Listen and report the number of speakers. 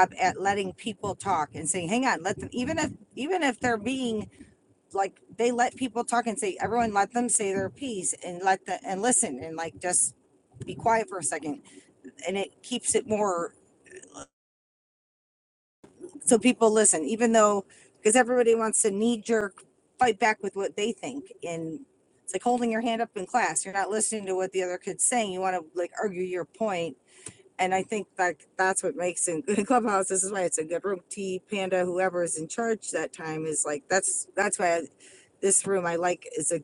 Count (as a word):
one